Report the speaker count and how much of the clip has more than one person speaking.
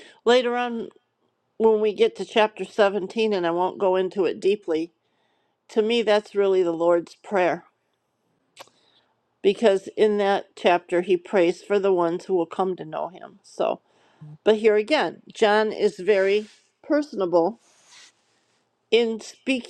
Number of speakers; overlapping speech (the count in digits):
1, no overlap